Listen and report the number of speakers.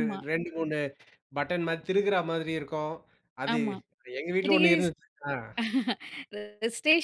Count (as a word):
two